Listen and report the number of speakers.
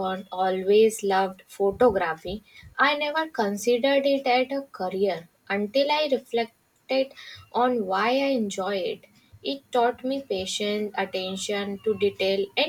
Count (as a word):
one